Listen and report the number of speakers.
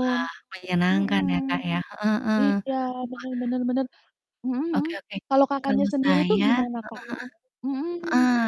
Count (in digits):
2